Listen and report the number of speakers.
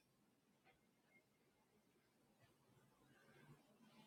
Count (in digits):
0